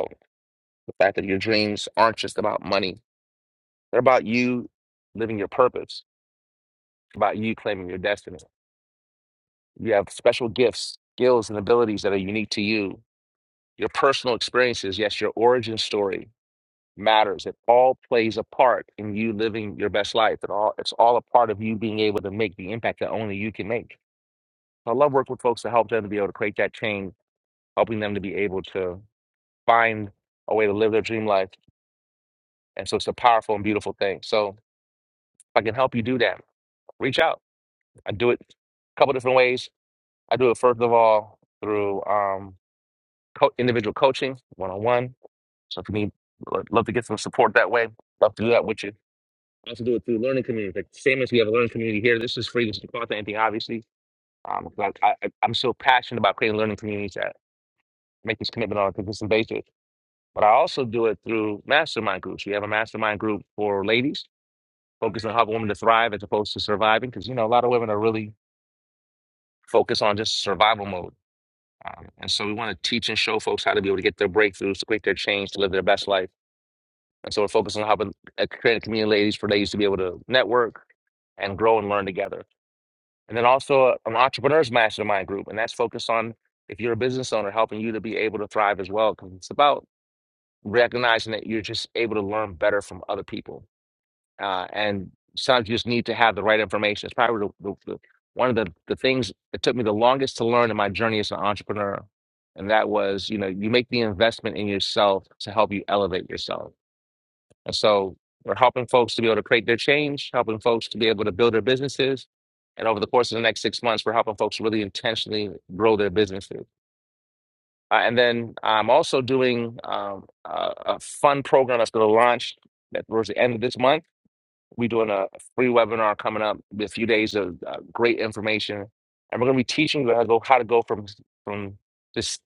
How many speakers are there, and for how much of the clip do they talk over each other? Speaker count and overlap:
one, no overlap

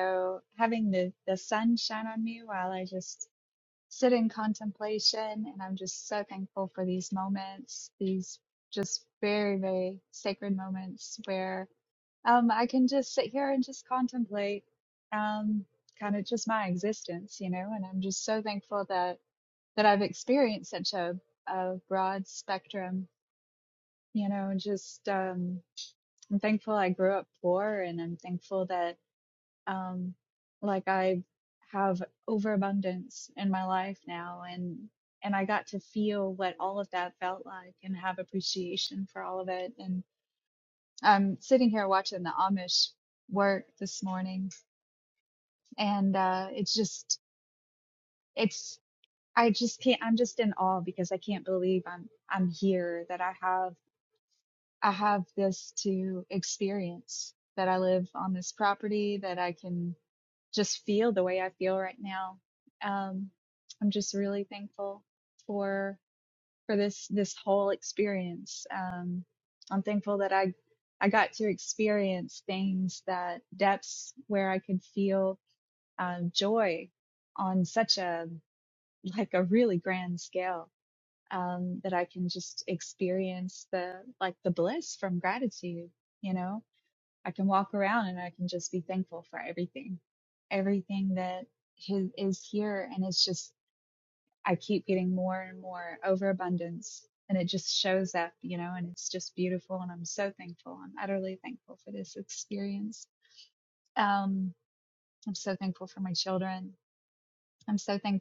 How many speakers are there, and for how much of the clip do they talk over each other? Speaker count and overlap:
one, no overlap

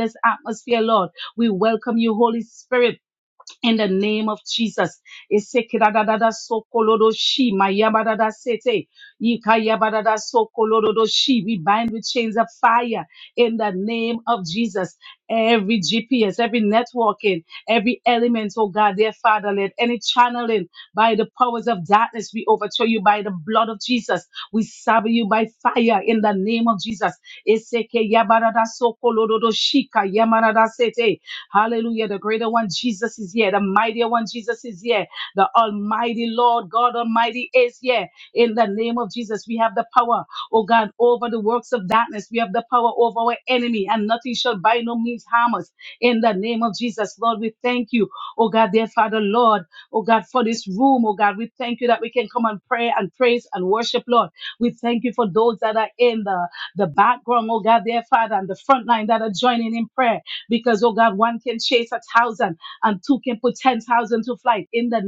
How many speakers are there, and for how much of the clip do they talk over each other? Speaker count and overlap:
one, no overlap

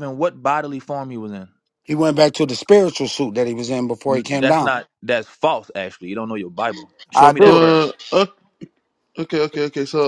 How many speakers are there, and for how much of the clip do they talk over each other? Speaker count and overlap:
three, about 12%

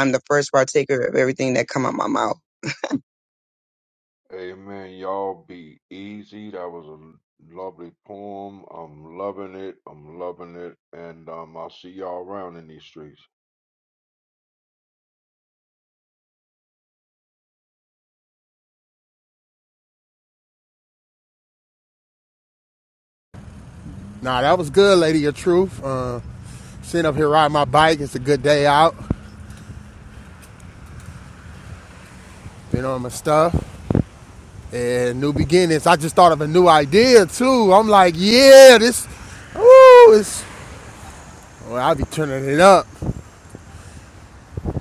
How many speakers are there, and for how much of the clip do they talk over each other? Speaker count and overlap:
three, no overlap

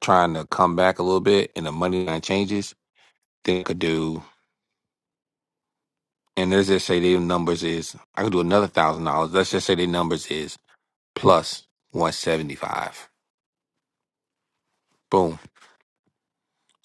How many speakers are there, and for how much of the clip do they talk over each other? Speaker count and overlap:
one, no overlap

